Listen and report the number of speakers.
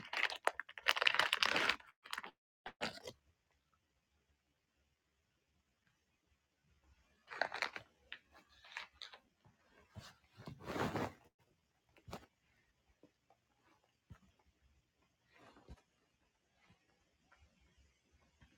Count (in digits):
0